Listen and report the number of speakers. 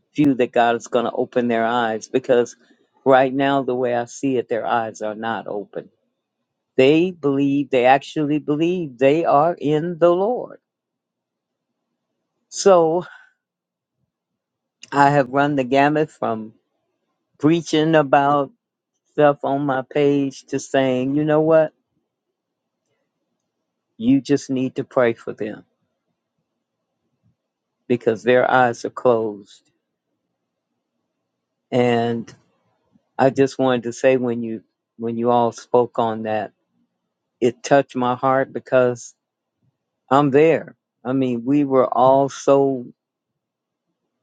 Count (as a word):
one